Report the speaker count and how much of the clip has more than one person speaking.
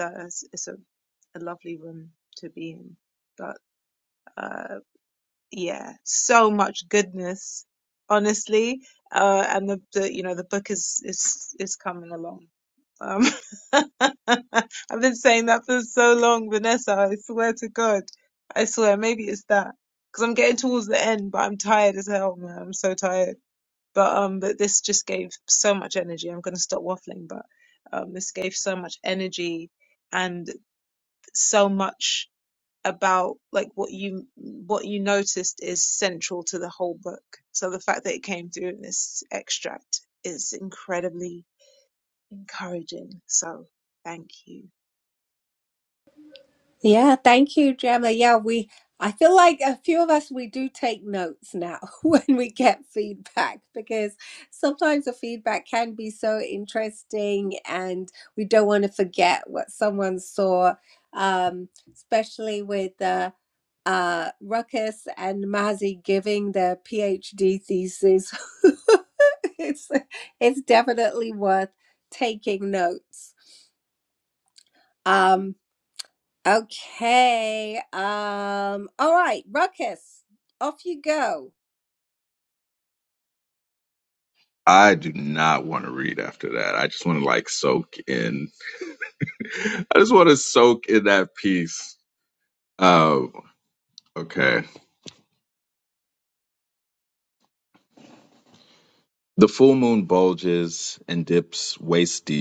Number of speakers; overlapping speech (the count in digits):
3, no overlap